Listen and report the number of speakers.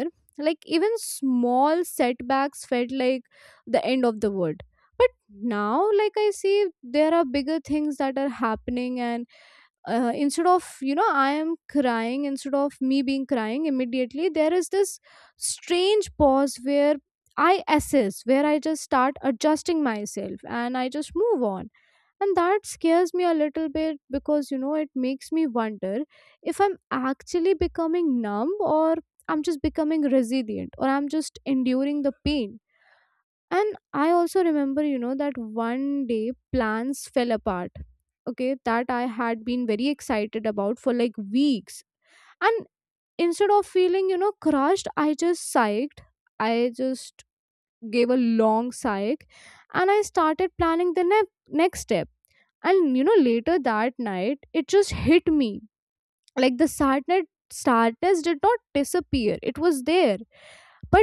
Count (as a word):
one